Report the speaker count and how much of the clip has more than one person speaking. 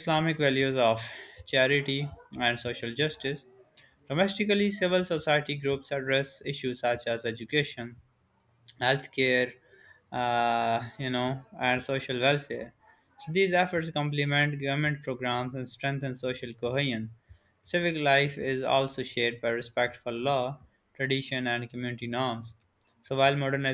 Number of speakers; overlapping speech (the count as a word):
one, no overlap